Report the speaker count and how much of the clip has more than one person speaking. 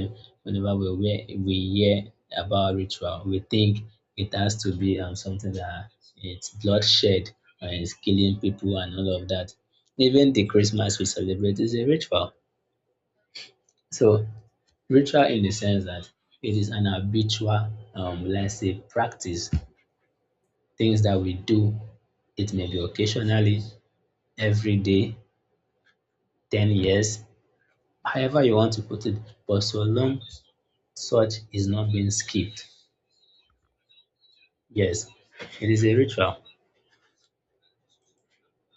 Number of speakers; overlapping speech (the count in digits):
1, no overlap